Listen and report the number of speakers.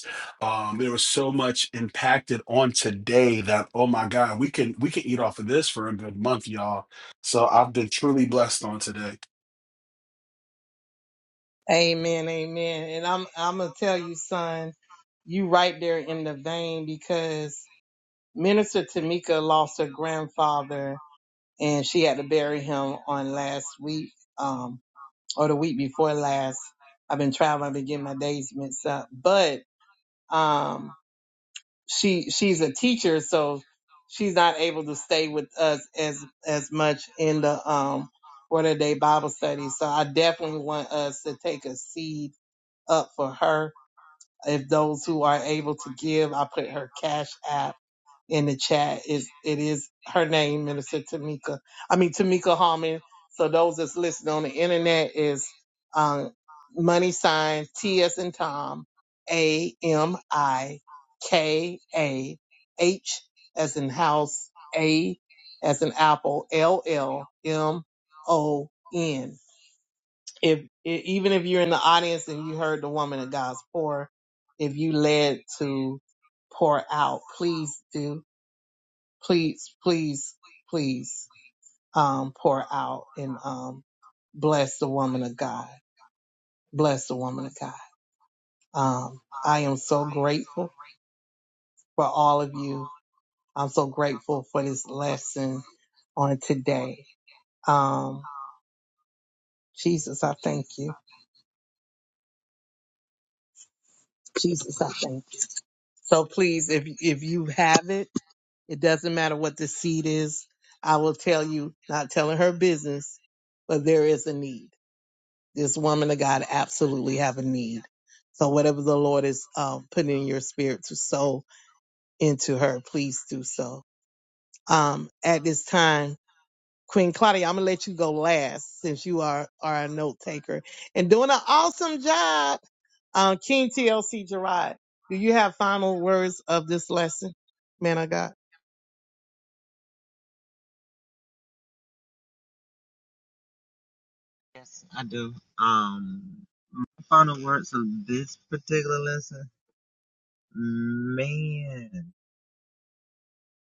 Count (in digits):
3